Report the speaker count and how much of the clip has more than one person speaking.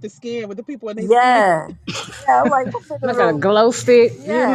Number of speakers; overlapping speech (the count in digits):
3, about 29%